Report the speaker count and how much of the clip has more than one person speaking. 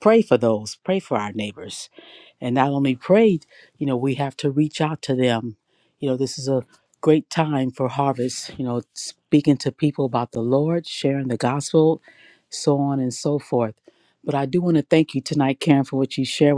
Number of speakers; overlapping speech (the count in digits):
1, no overlap